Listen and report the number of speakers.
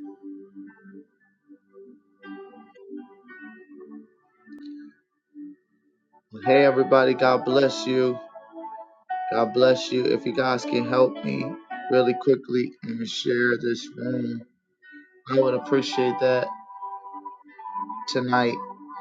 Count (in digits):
1